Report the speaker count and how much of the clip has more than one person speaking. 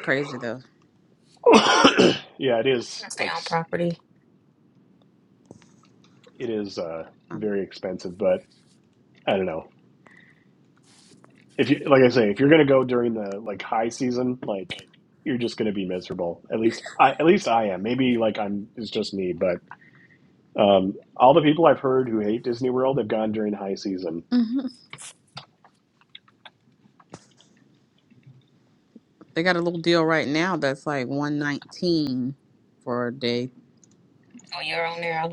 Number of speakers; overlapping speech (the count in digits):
3, about 1%